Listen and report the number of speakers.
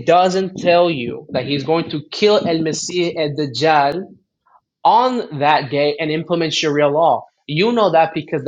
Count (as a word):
one